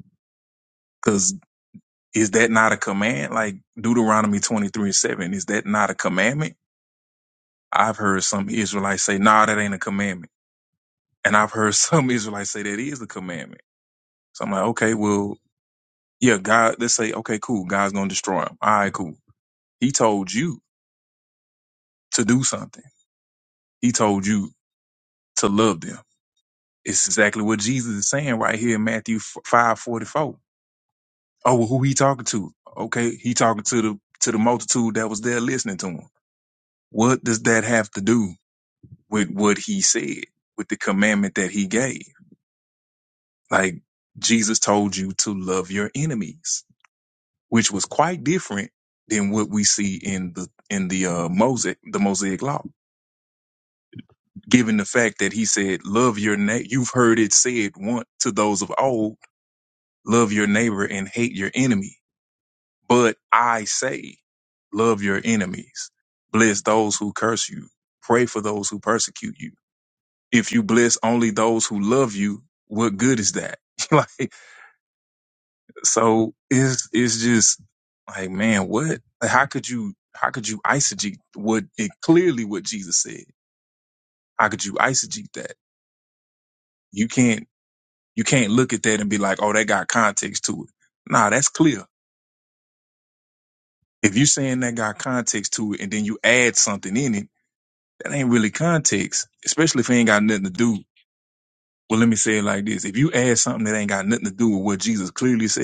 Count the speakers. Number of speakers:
one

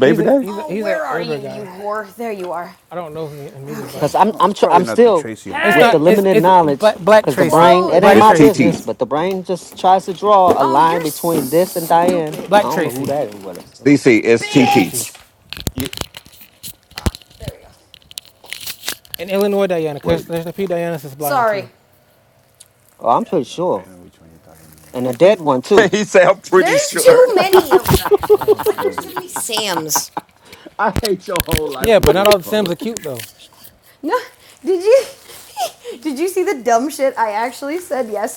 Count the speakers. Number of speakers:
five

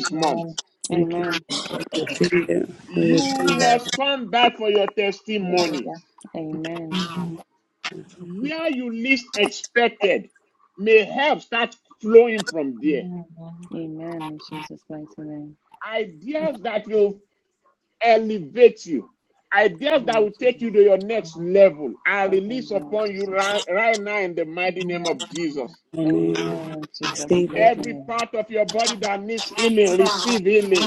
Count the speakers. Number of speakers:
four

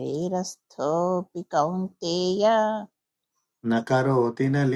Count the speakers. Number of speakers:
two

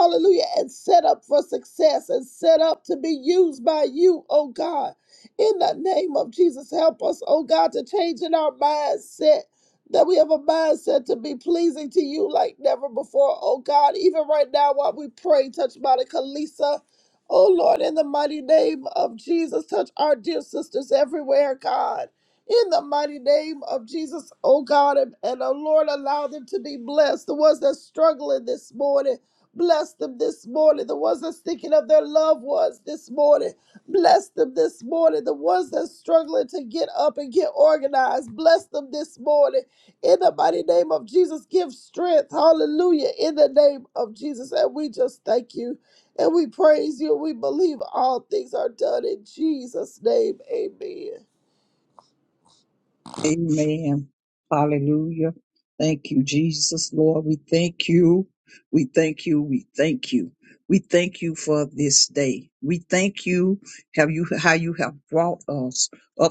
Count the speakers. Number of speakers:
two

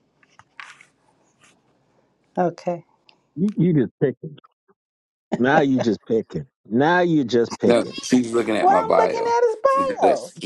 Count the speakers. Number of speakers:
three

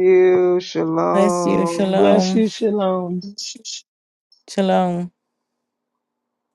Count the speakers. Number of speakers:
three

